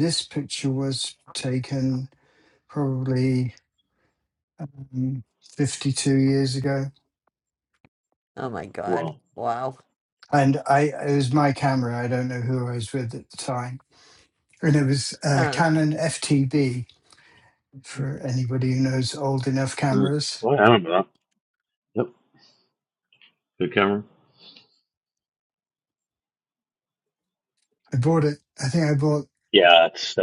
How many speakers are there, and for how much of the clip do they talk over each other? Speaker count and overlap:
3, about 3%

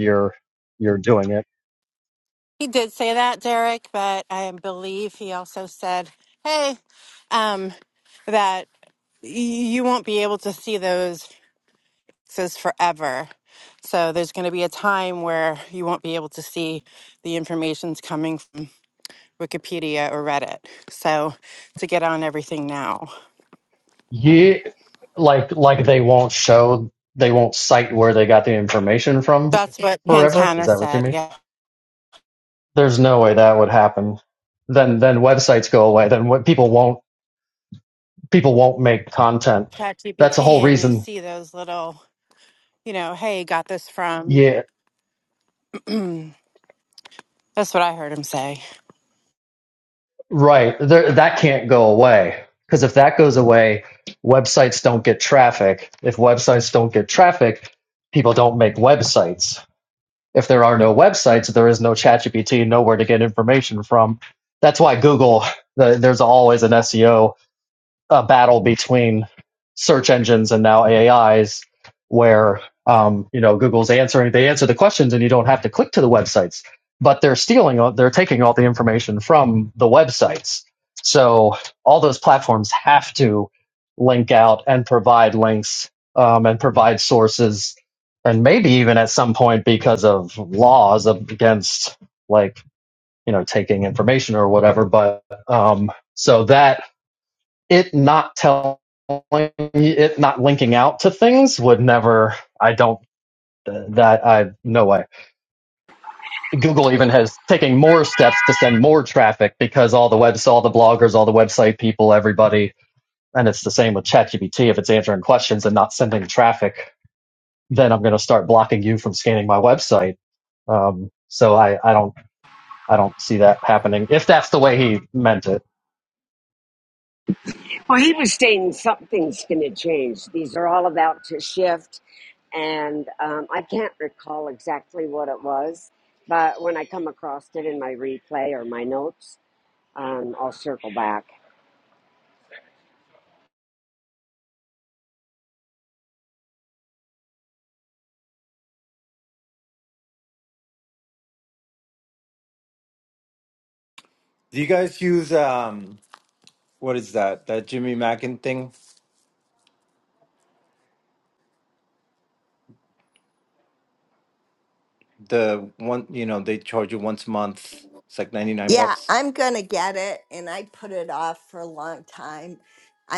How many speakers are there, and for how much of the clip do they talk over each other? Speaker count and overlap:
5, about 1%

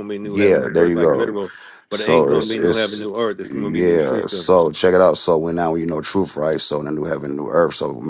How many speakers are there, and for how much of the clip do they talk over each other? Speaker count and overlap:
2, about 40%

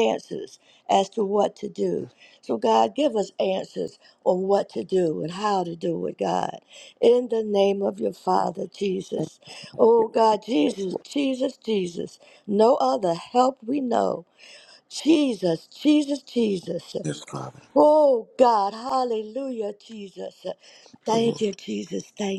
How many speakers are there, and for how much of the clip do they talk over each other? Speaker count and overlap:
2, about 3%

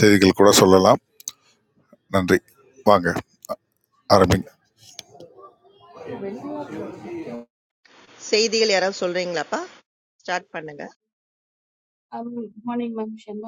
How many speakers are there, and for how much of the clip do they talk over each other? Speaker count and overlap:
3, no overlap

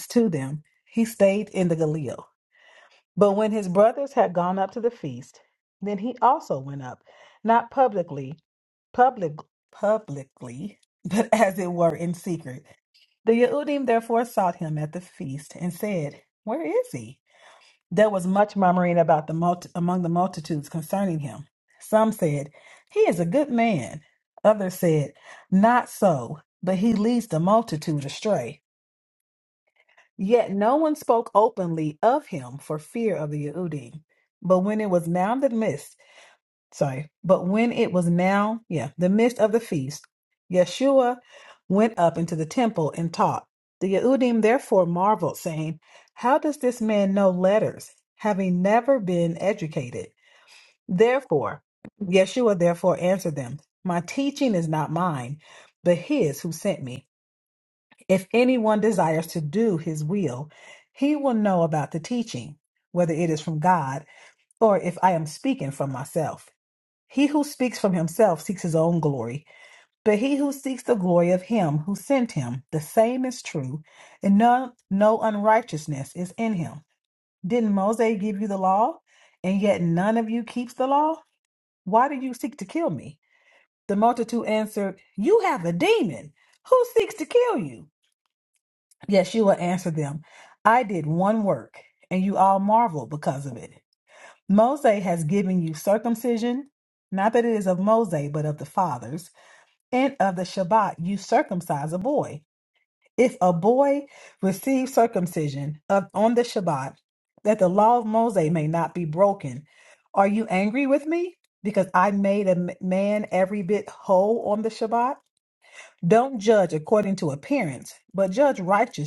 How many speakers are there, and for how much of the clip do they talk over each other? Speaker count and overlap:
1, no overlap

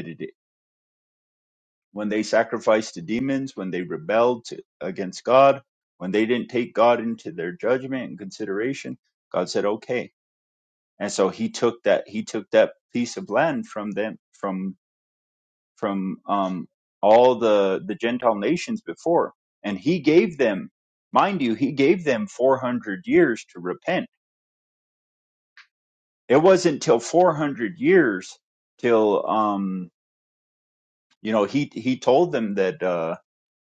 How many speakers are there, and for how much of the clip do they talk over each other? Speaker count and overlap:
1, no overlap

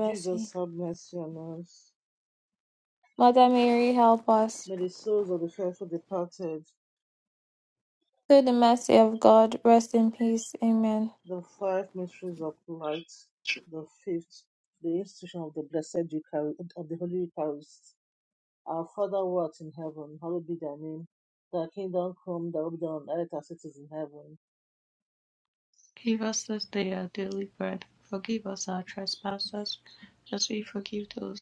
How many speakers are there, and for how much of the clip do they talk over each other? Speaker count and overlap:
3, about 1%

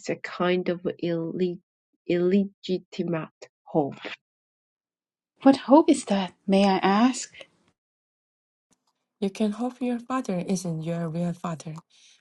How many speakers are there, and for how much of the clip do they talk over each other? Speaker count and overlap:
3, no overlap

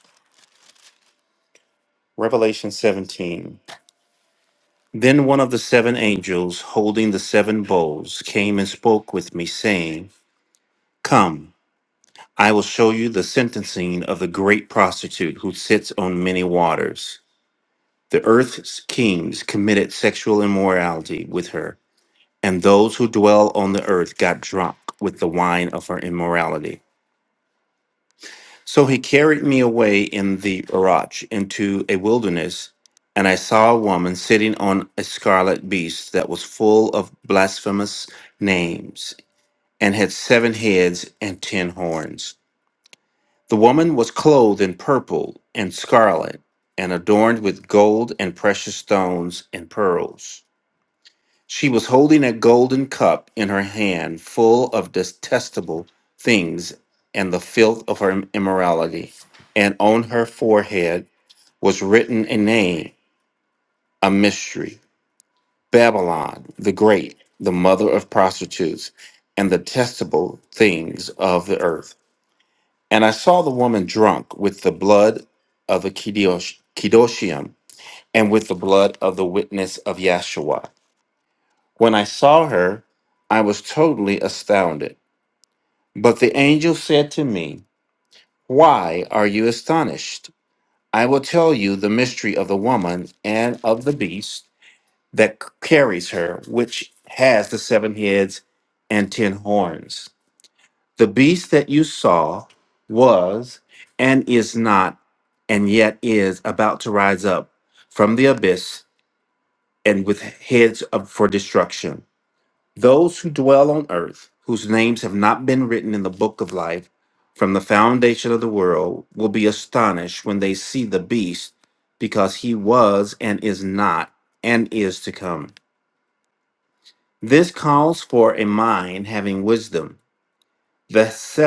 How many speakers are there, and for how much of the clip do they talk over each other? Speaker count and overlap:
1, no overlap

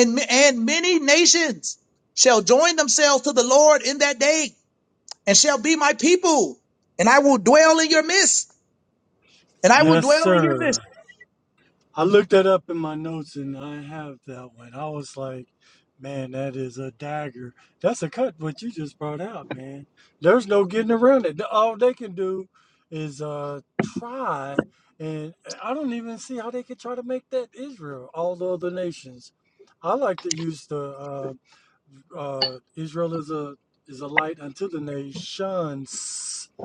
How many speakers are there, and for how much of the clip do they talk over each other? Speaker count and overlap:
2, about 3%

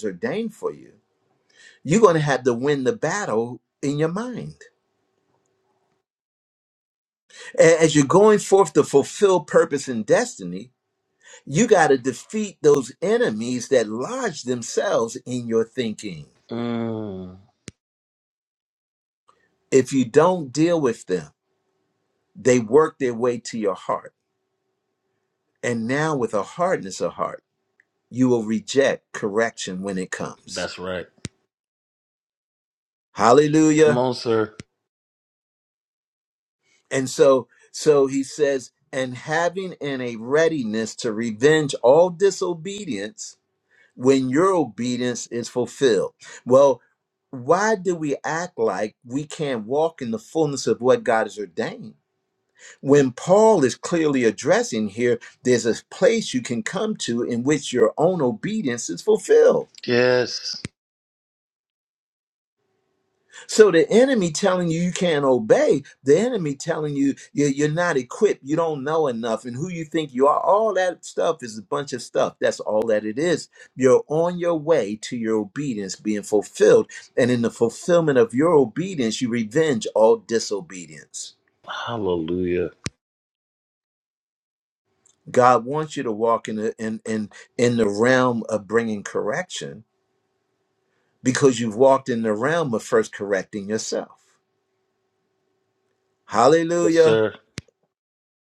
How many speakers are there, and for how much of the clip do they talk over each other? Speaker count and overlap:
2, about 1%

